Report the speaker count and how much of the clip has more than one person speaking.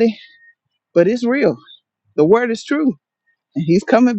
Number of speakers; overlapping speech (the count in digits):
1, no overlap